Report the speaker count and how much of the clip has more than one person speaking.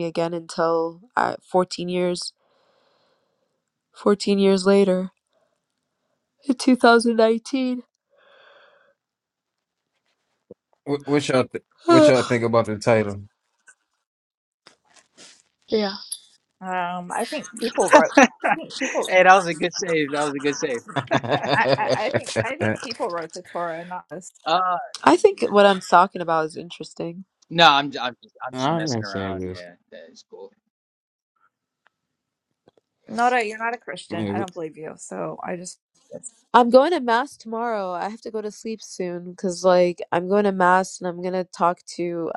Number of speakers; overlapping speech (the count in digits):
4, about 6%